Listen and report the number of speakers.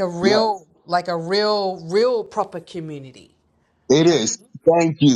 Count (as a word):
two